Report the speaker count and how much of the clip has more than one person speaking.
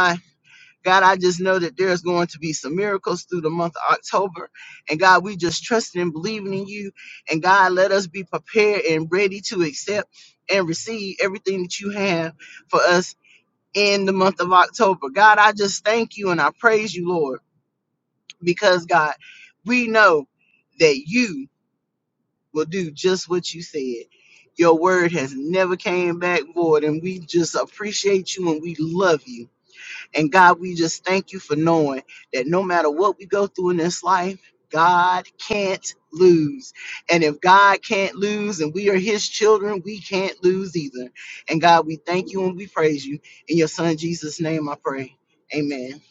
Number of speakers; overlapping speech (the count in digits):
1, no overlap